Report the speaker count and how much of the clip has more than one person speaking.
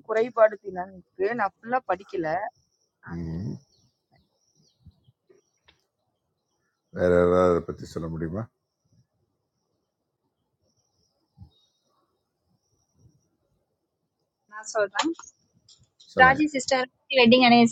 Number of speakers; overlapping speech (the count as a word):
three, about 1%